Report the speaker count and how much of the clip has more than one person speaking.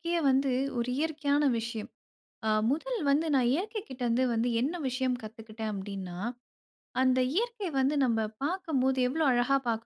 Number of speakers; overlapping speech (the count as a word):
one, no overlap